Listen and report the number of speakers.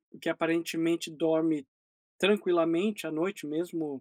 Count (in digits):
1